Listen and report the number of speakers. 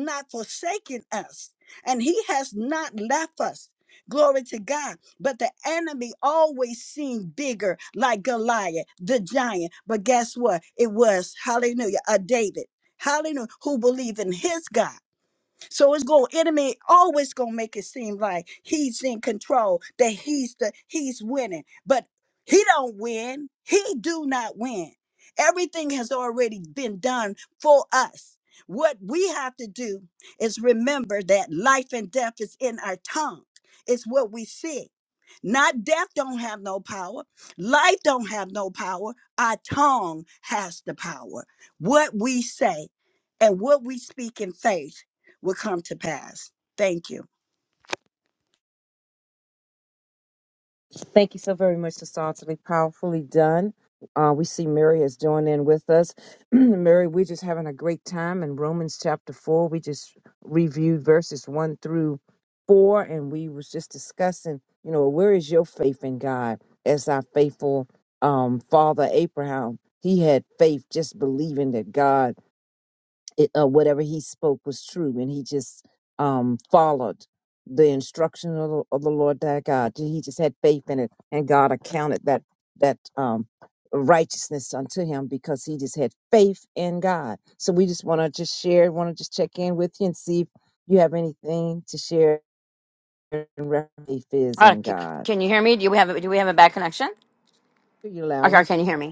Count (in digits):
3